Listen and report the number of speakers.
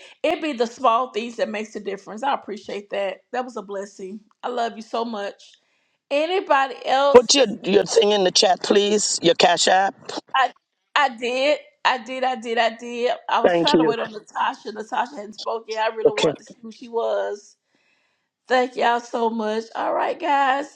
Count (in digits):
2